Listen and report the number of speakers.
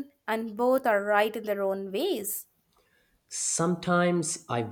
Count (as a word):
two